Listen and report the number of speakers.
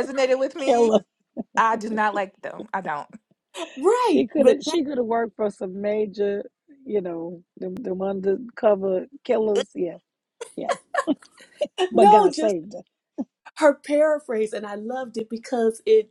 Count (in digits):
3